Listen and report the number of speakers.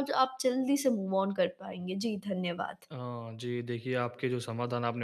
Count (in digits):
2